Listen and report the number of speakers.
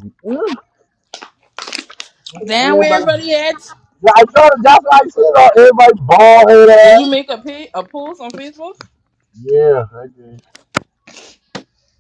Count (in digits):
2